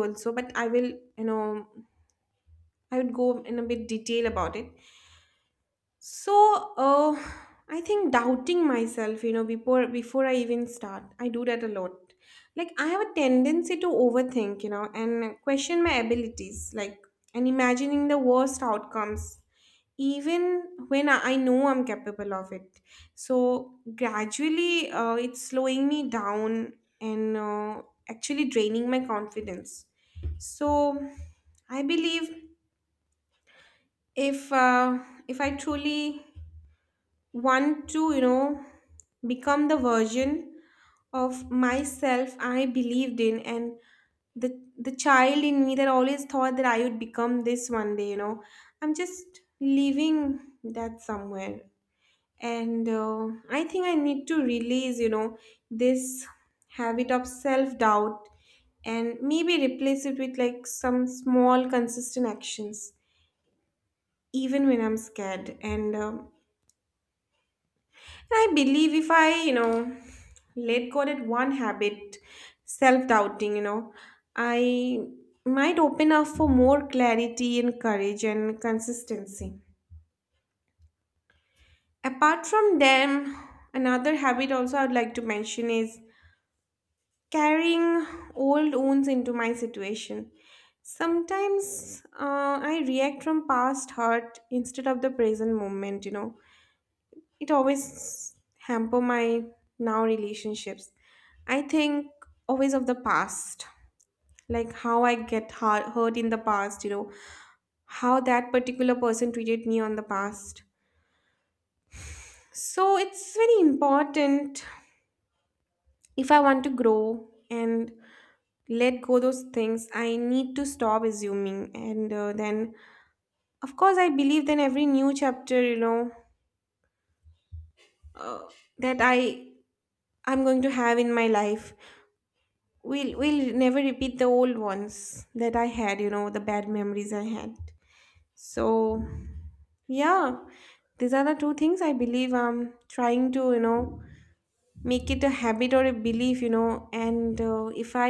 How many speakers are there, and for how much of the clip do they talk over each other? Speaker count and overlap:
1, no overlap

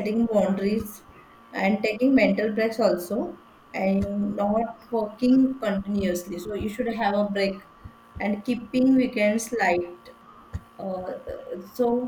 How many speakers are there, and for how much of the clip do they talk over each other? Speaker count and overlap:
1, no overlap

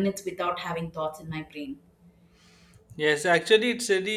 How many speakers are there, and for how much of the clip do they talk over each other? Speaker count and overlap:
2, no overlap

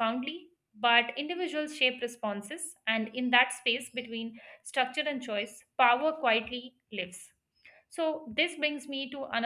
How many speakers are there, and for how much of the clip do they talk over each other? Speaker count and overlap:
1, no overlap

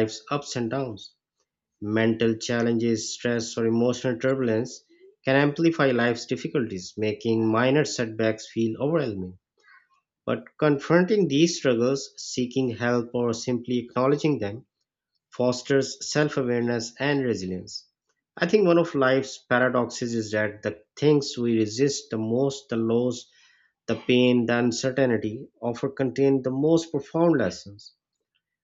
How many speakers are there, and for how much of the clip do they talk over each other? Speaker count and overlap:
1, no overlap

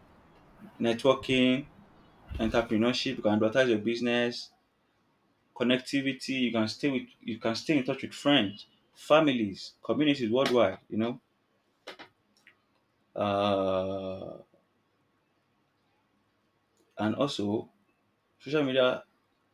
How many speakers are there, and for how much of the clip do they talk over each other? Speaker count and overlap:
1, no overlap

